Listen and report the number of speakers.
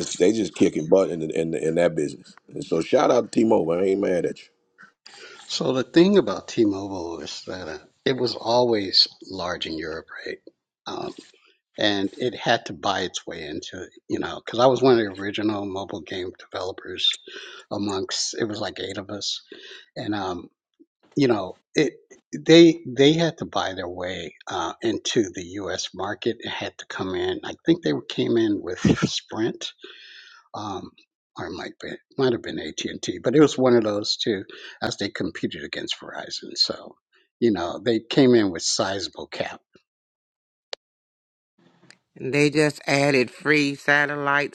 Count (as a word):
three